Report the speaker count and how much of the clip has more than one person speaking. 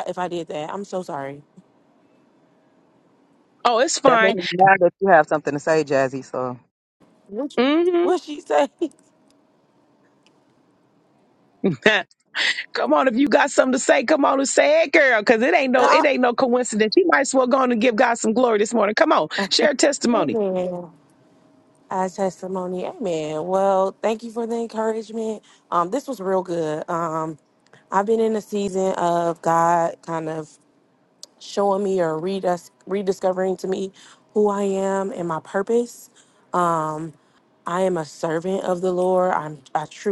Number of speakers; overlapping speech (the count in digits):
3, about 2%